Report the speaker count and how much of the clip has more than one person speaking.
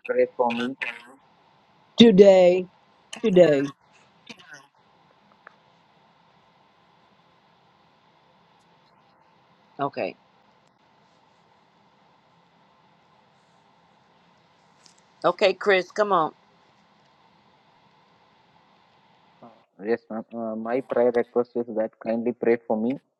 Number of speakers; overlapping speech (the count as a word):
three, no overlap